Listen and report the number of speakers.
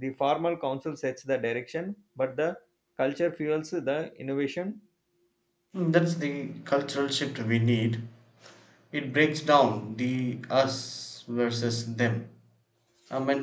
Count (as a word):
two